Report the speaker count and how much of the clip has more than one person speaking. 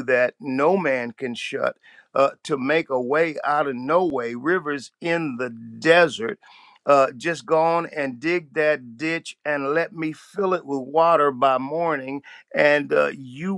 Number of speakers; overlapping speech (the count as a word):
one, no overlap